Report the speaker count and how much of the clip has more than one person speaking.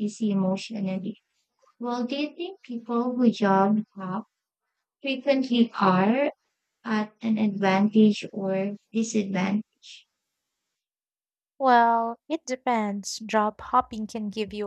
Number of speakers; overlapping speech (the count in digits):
2, no overlap